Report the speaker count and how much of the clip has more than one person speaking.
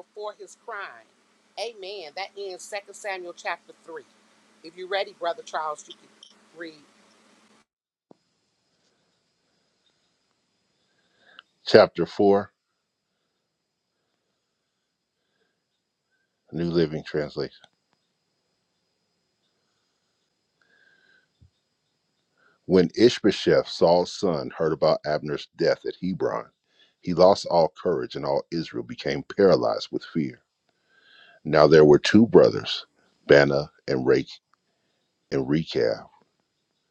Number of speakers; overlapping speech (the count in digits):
2, no overlap